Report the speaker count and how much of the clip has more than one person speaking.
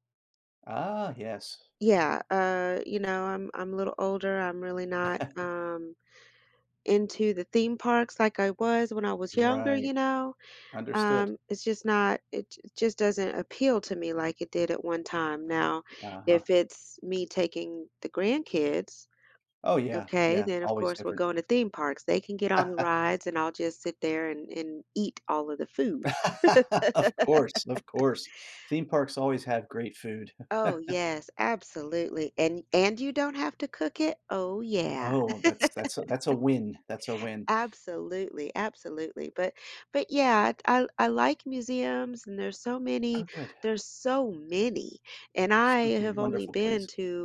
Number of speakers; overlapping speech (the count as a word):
two, about 8%